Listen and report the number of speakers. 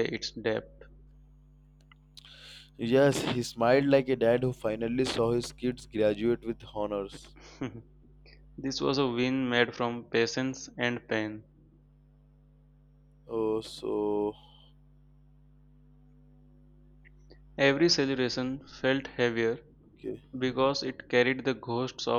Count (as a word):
two